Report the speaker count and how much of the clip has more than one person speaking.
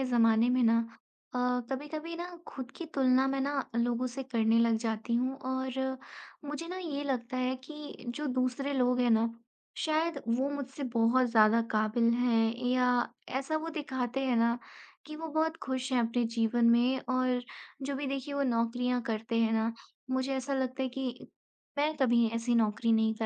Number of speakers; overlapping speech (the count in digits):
1, no overlap